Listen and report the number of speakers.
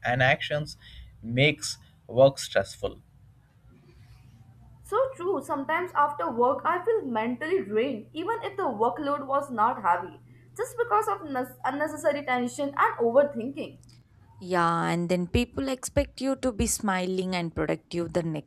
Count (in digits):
3